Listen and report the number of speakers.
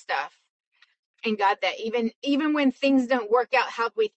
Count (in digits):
1